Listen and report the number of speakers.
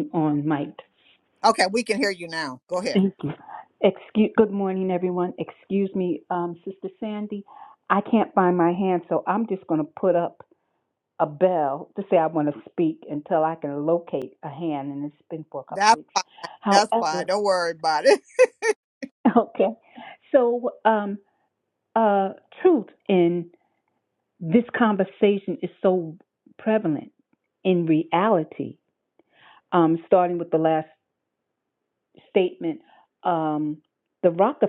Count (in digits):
2